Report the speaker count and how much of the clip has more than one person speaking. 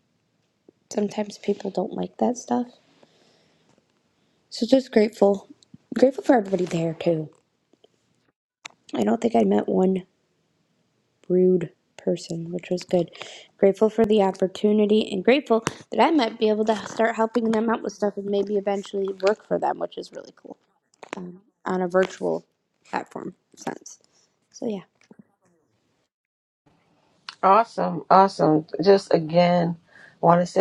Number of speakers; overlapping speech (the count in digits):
2, no overlap